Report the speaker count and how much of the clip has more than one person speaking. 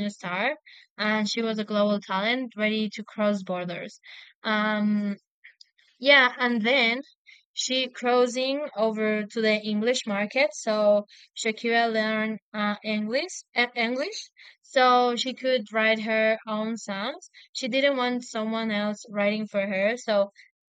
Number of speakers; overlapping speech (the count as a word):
one, no overlap